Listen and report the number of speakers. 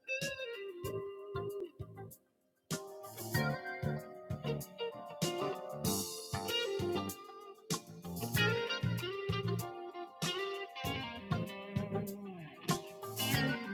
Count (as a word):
zero